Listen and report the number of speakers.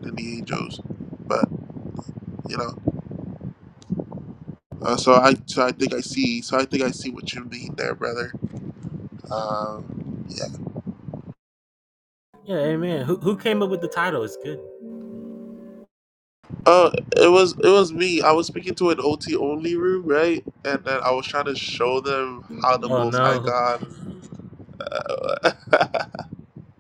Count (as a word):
two